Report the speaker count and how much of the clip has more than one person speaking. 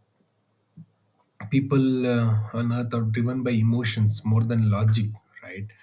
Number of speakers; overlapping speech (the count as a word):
one, no overlap